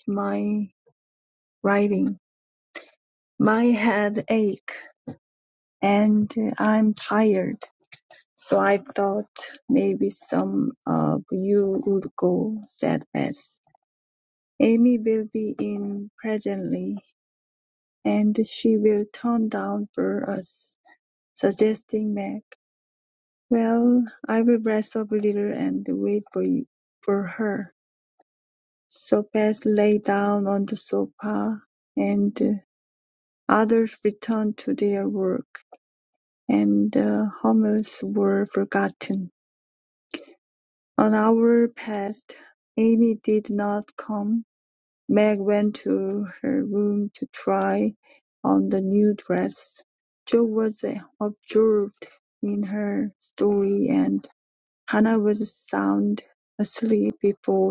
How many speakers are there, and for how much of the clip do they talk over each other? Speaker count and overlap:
1, no overlap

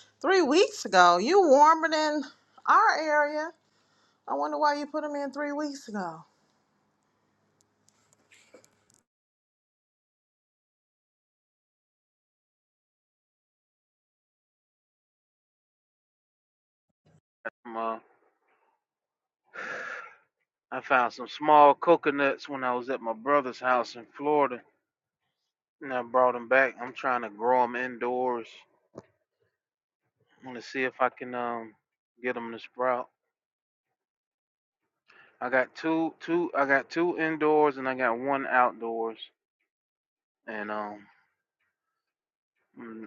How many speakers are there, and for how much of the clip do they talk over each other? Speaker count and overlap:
2, no overlap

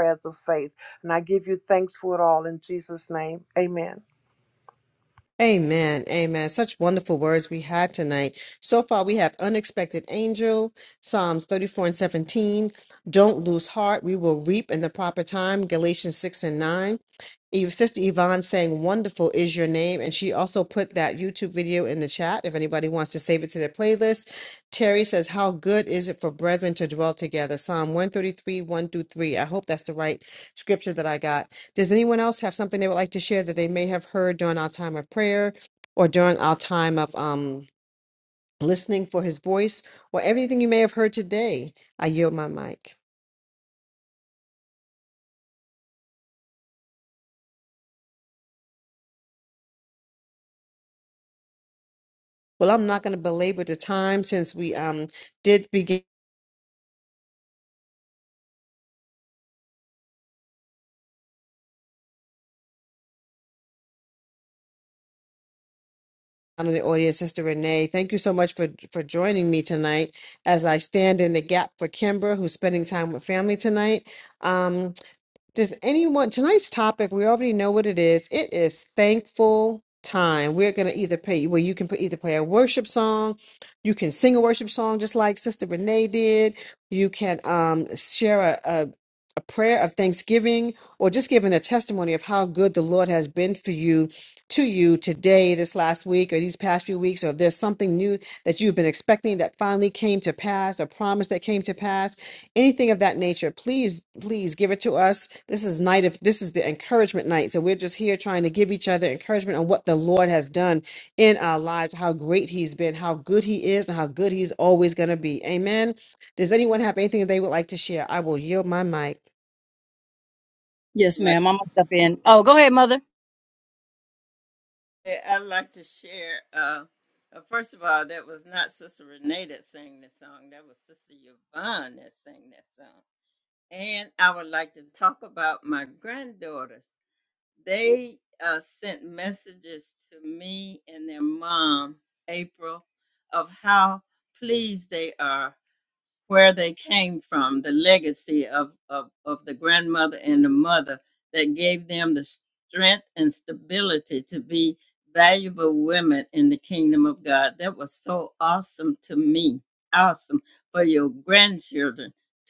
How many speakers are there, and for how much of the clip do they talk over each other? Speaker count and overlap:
4, no overlap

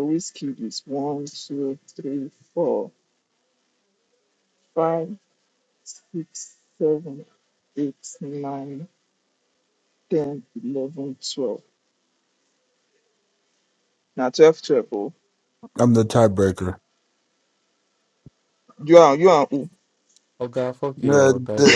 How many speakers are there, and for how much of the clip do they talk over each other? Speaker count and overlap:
3, about 2%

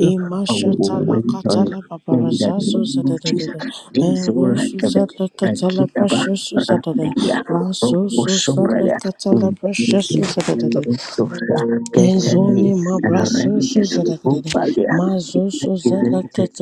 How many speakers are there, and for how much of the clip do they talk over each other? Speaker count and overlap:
2, about 64%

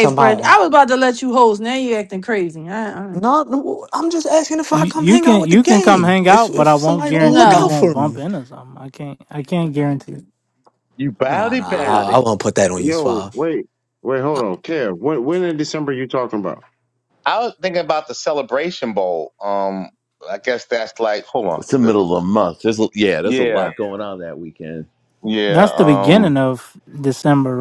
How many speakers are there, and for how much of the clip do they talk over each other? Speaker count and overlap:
6, about 26%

